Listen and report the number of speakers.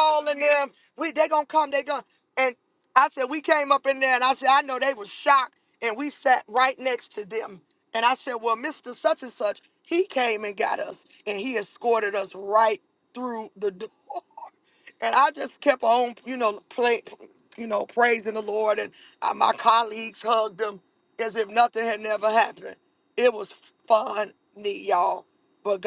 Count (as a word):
one